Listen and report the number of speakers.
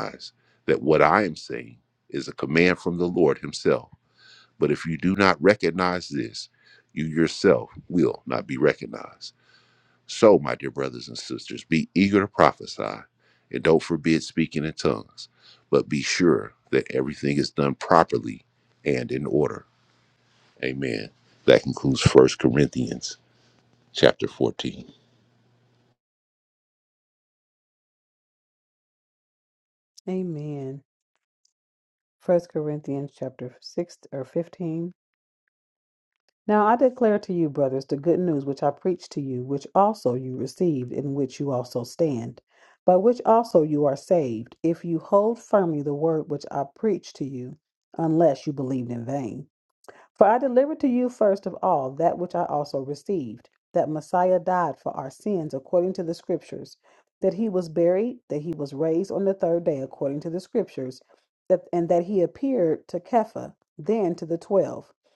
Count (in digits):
2